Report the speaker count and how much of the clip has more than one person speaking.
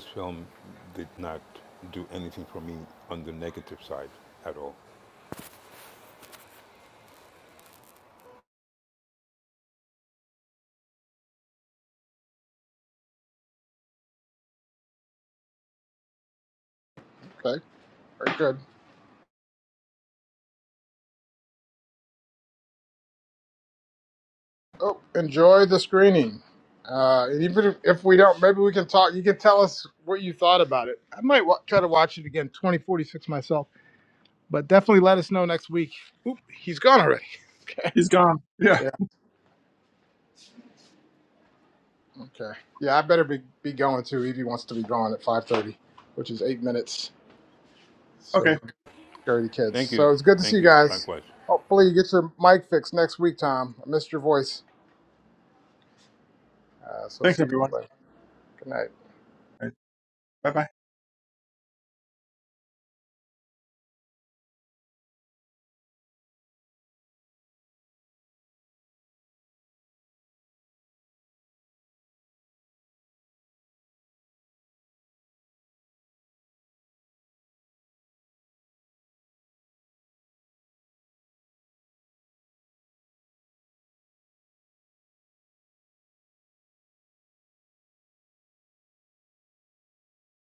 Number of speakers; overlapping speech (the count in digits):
3, about 2%